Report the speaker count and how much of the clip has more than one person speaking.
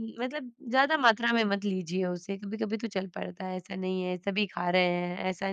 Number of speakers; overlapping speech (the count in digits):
1, no overlap